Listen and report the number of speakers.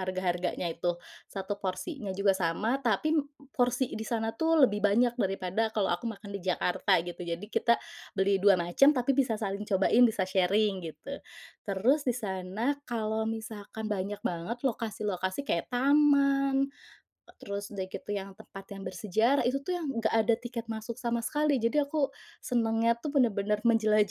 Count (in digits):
1